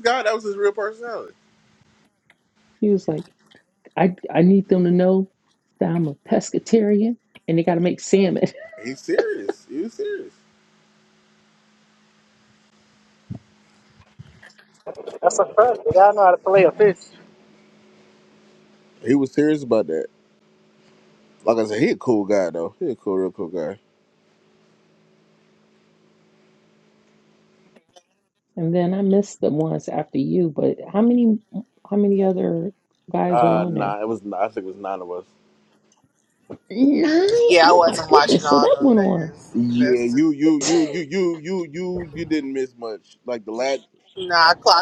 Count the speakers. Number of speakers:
four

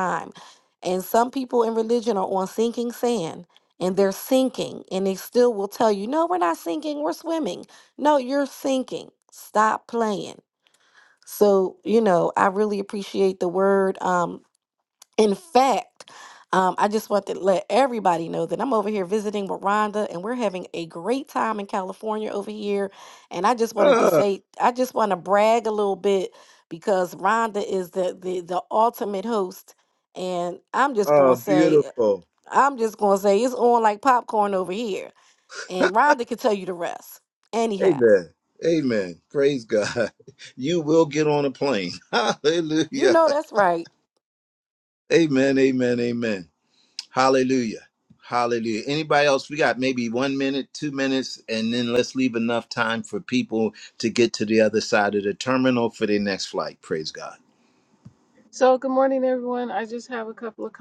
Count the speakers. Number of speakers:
three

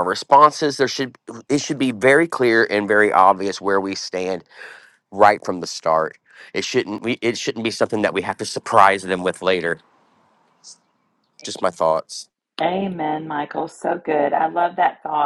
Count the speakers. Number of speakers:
two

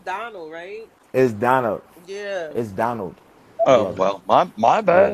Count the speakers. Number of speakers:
three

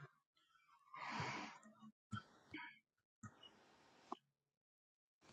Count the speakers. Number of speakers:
zero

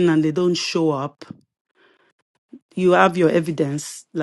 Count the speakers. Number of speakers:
one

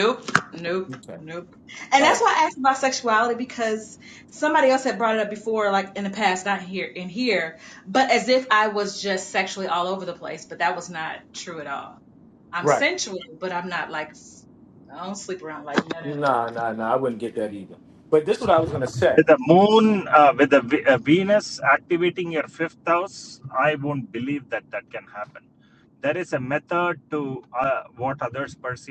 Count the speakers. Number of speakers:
three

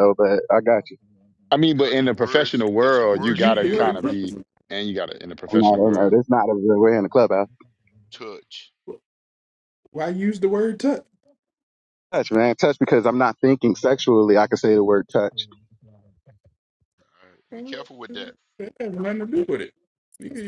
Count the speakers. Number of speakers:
four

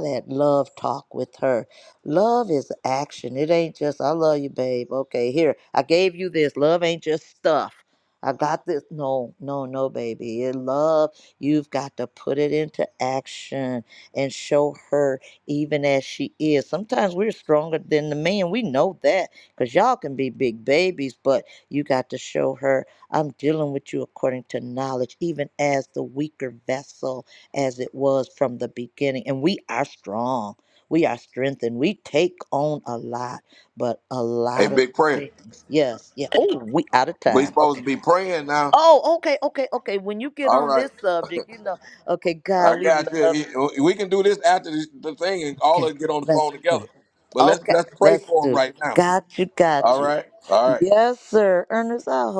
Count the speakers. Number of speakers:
two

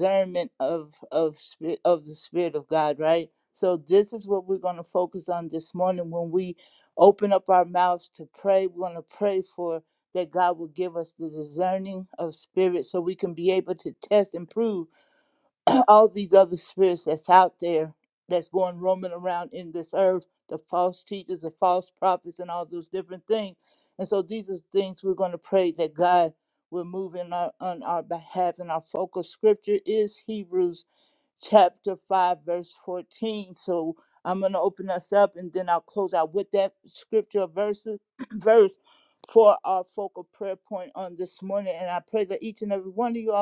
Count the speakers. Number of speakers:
one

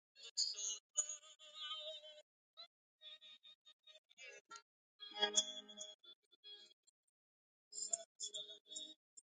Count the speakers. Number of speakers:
zero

